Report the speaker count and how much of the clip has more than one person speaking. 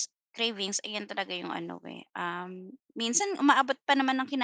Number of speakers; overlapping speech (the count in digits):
1, no overlap